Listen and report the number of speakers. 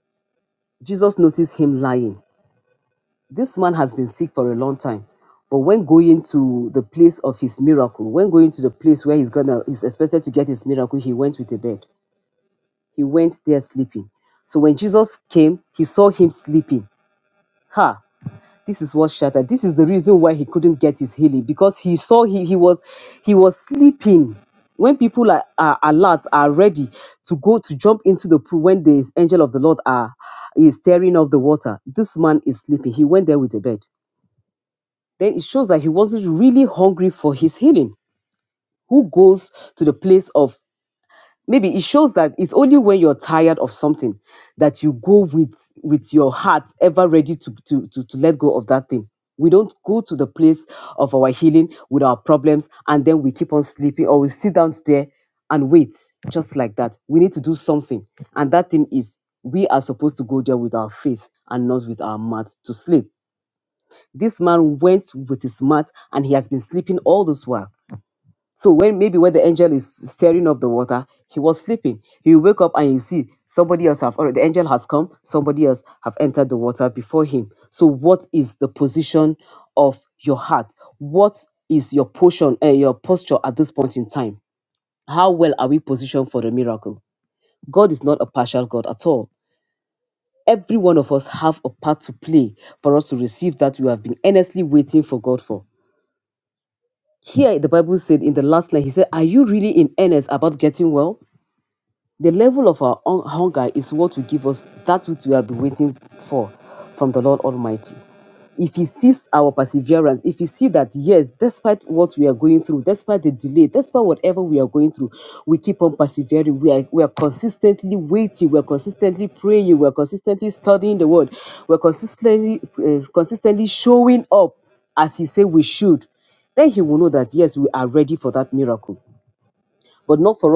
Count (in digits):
1